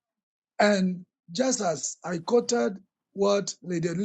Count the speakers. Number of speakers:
1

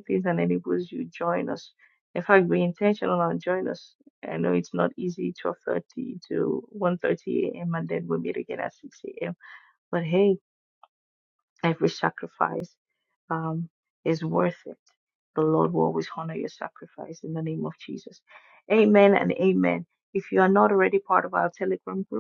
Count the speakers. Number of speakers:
1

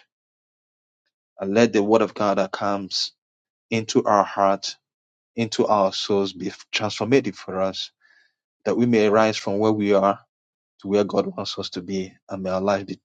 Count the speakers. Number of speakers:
1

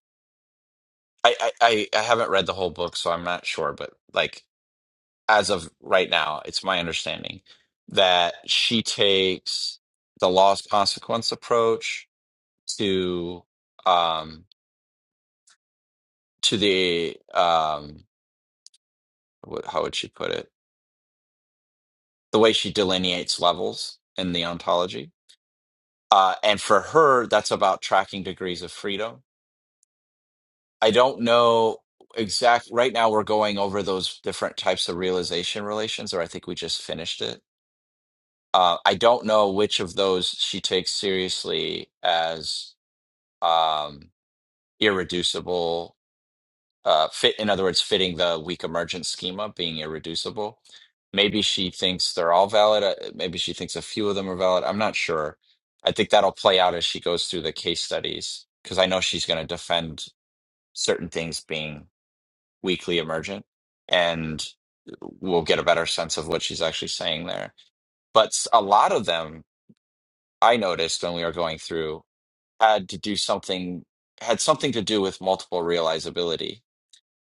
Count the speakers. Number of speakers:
1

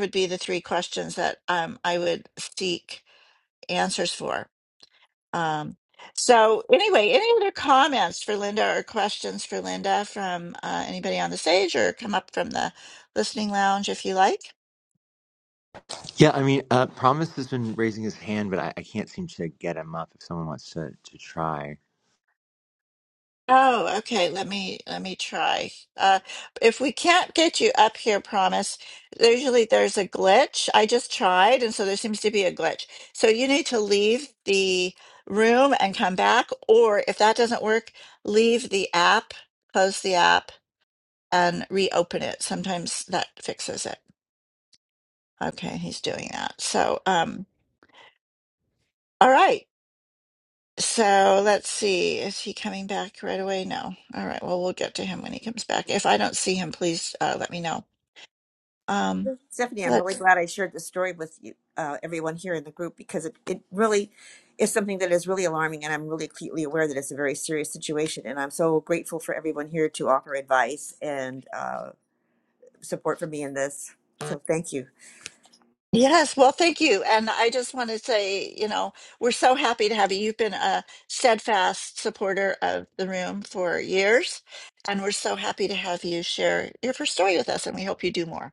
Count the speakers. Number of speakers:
3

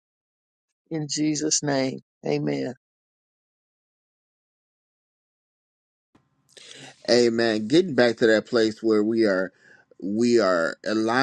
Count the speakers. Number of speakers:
2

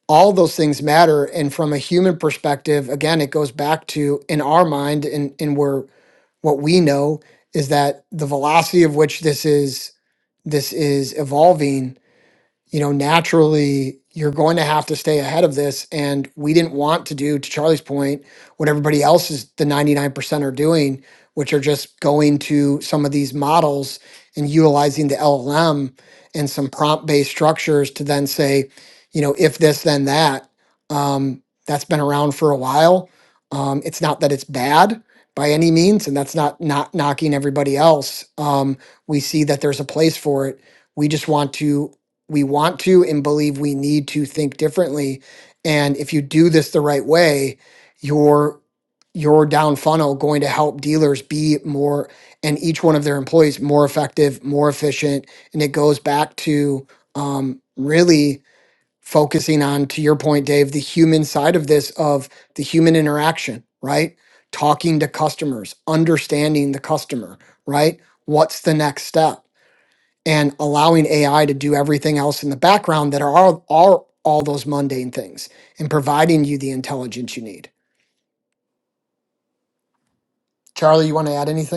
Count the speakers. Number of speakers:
1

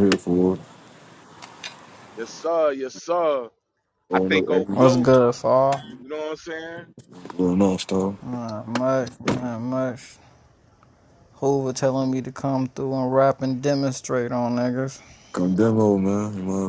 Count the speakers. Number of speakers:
3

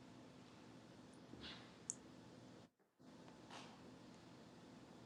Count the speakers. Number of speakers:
0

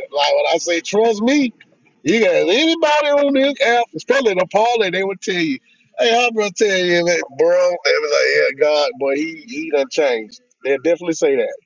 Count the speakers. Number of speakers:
1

